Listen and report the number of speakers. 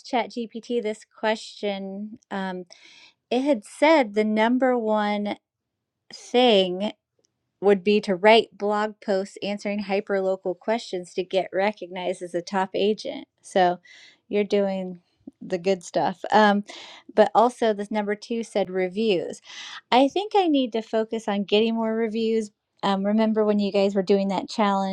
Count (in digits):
1